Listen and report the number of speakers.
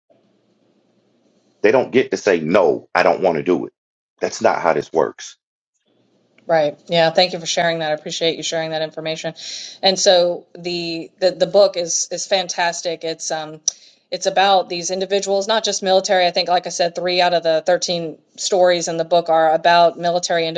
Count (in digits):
2